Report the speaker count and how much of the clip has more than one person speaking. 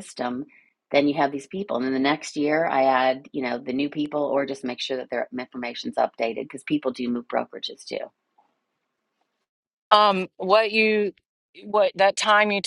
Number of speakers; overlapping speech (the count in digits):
2, no overlap